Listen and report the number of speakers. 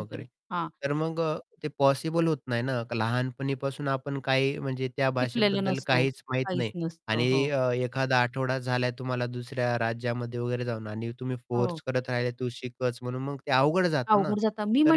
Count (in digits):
2